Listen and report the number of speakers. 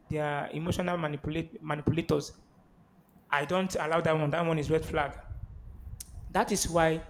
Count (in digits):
1